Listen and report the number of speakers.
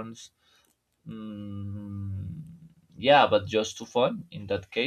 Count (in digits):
1